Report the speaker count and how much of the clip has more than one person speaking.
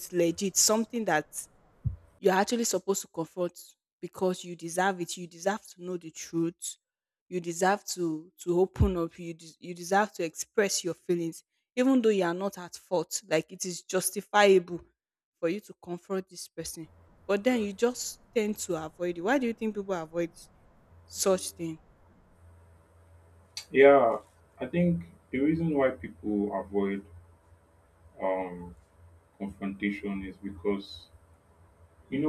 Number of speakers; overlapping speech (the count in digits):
2, no overlap